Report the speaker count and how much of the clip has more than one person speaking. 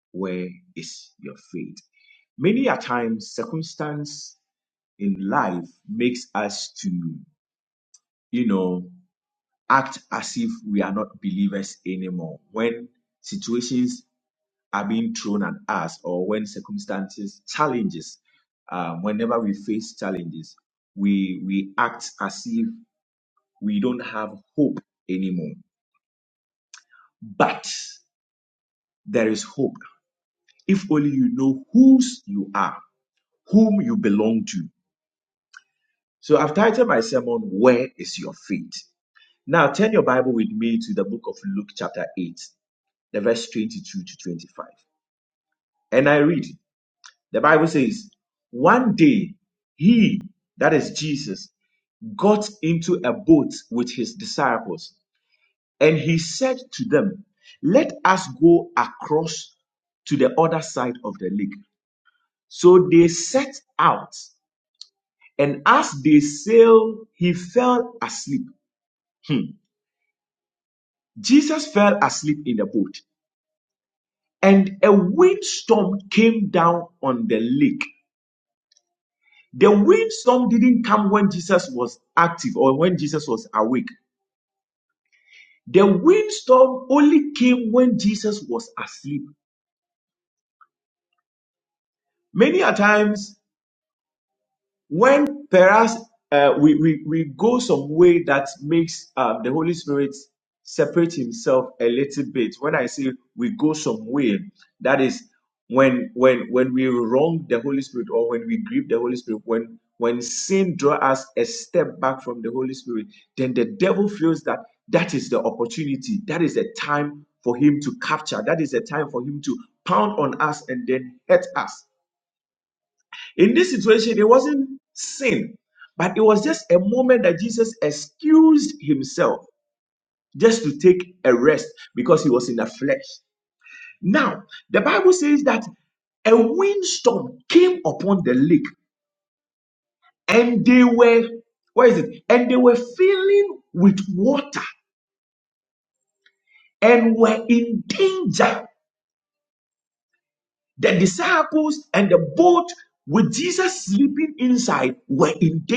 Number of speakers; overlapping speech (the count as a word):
one, no overlap